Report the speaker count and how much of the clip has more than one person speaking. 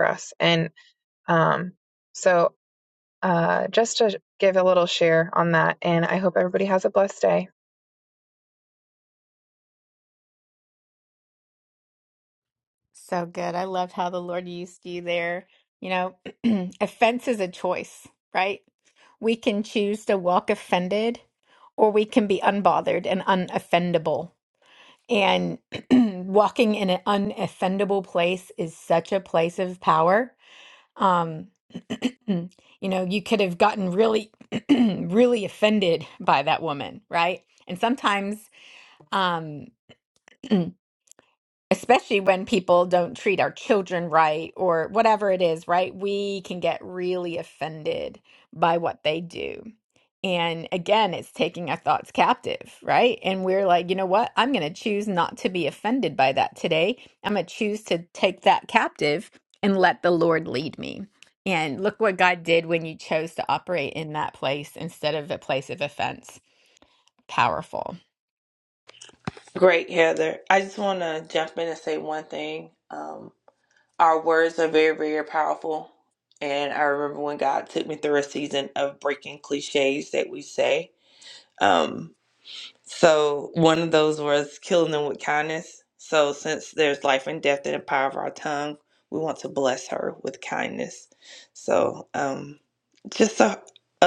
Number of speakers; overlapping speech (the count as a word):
three, no overlap